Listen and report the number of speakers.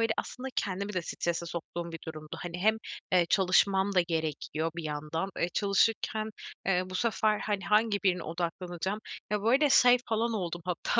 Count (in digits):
1